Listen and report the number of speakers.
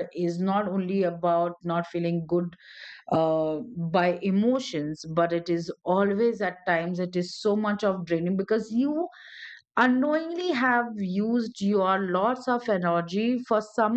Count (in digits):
1